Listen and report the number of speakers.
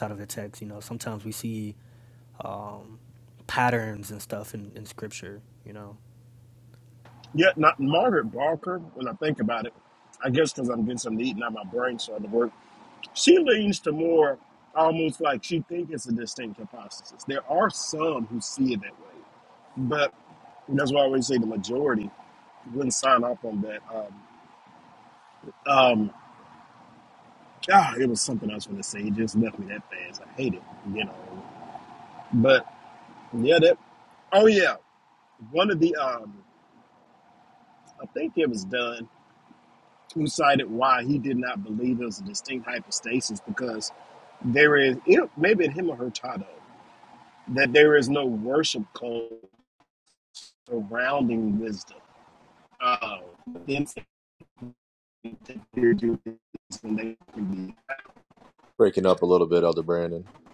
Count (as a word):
three